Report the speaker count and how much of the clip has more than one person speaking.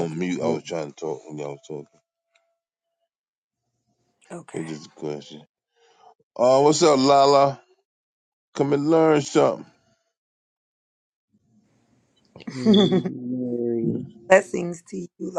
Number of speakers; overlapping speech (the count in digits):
3, about 4%